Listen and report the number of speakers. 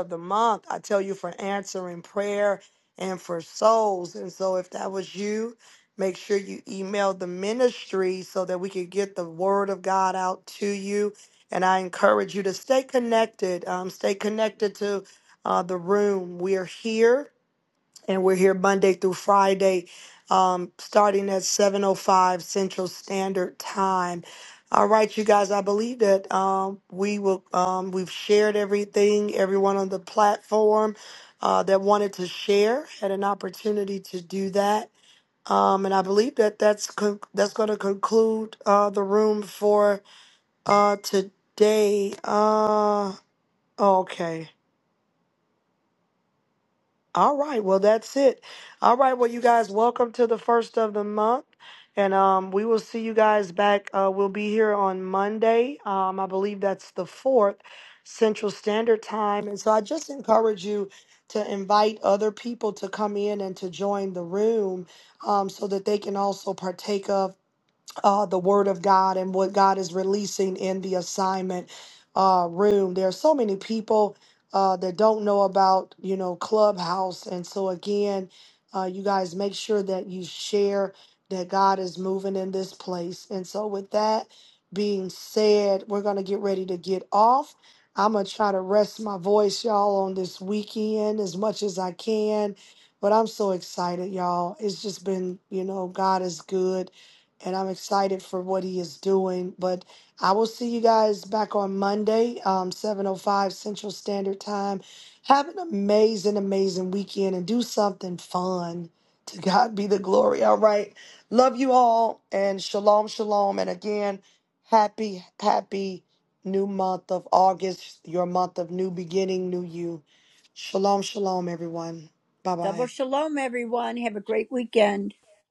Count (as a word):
two